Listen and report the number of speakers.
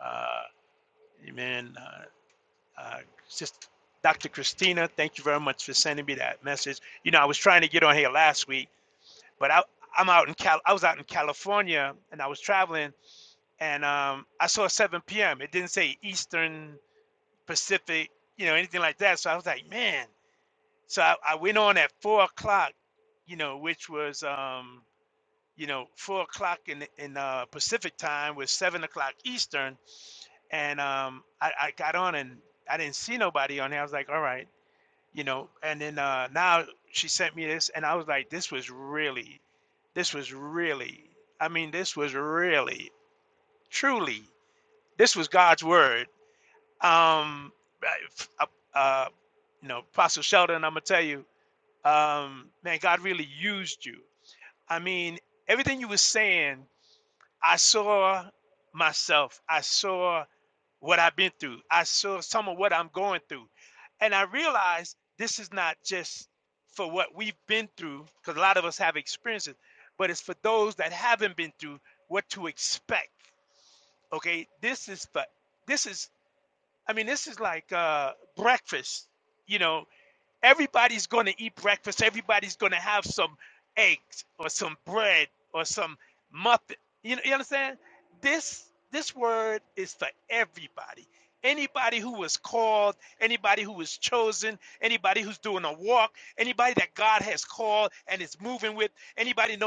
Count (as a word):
one